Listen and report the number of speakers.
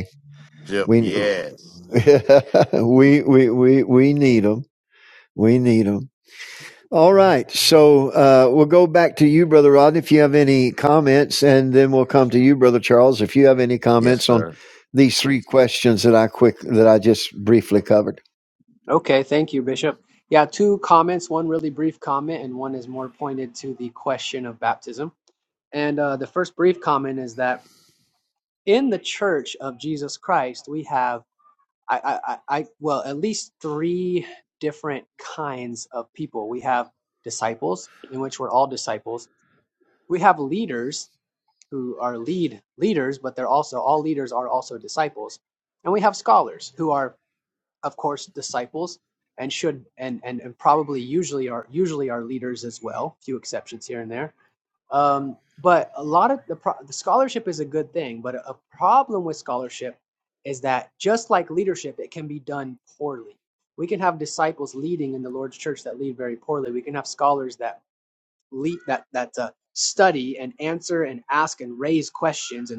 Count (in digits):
3